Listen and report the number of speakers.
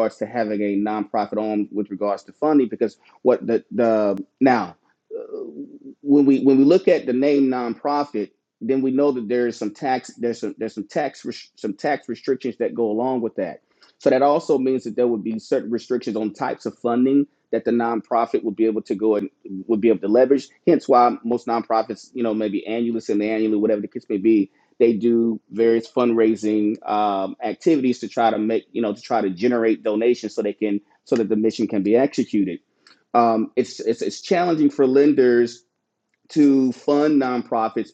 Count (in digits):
1